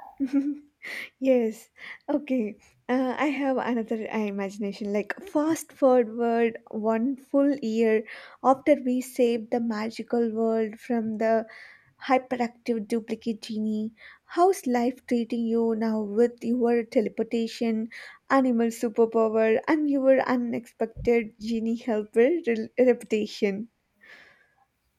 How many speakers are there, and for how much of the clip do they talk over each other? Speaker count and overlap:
one, no overlap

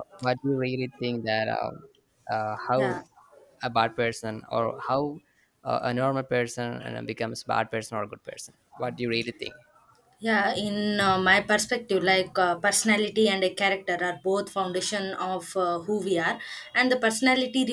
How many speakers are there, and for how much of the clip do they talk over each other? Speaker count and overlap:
two, about 1%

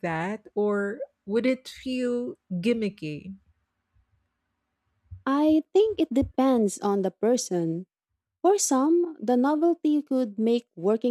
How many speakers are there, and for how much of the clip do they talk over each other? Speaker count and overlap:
two, no overlap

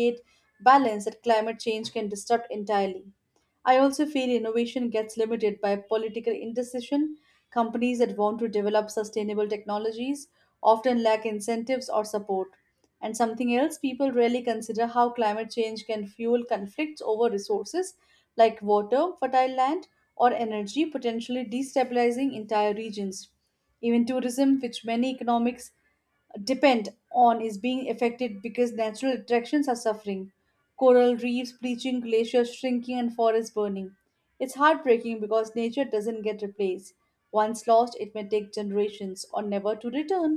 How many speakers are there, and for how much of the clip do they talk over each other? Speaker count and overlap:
one, no overlap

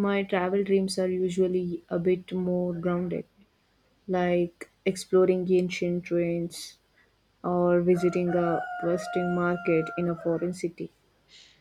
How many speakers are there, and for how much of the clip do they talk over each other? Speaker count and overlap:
one, no overlap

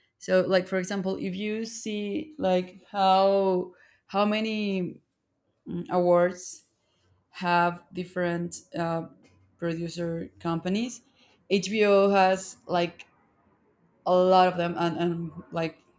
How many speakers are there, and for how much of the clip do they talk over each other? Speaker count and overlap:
one, no overlap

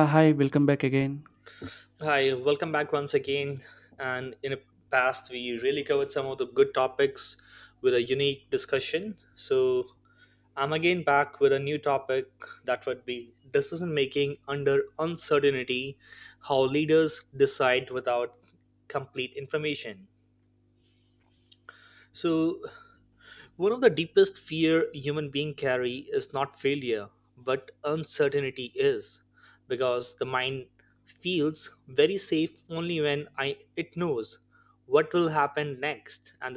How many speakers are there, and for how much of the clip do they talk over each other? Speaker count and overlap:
two, no overlap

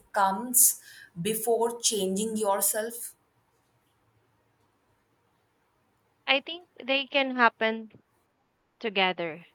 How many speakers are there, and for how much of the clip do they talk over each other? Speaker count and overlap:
two, no overlap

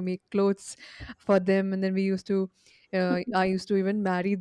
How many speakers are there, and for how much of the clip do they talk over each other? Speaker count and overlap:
one, no overlap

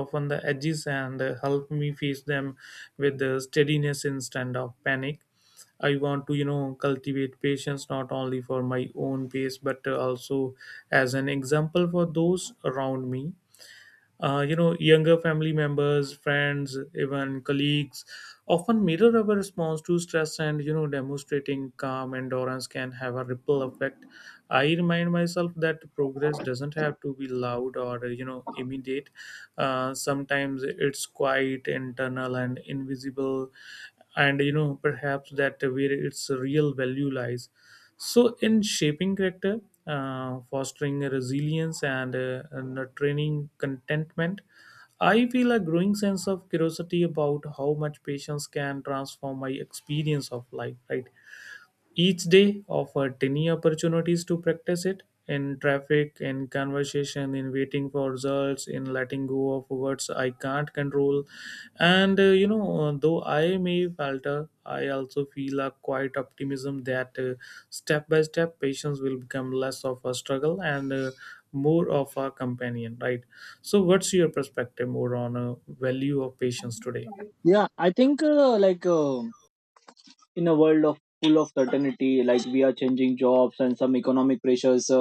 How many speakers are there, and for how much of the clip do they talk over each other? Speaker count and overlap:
two, no overlap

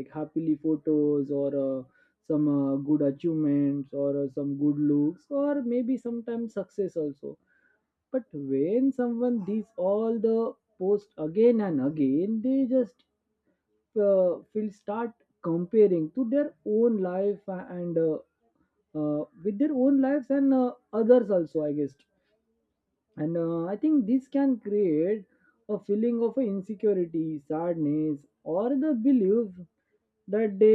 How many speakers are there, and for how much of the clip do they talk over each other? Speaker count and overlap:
one, no overlap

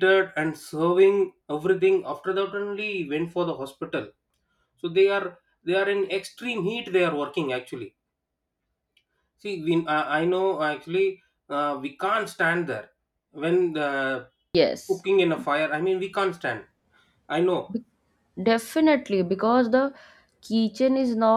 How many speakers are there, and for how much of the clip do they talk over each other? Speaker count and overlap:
two, no overlap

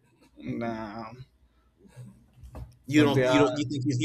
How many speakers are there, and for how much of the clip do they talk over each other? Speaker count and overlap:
two, about 16%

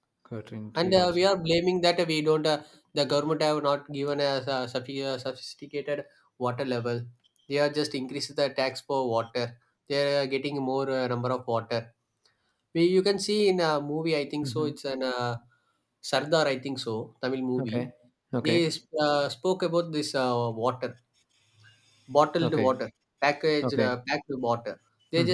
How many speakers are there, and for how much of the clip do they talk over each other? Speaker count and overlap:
two, about 8%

